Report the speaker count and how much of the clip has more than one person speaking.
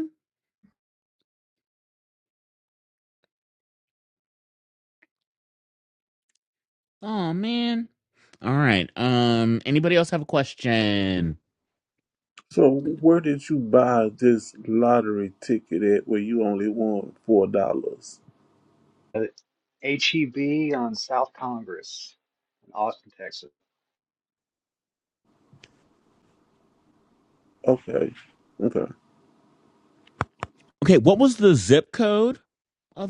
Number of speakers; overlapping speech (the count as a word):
three, no overlap